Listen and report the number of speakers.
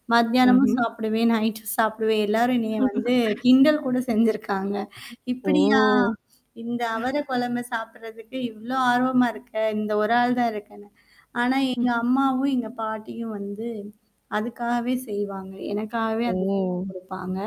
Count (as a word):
two